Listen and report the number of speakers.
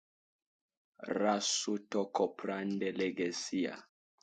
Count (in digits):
1